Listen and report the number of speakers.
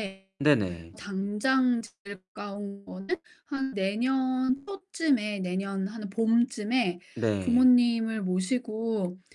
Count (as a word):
two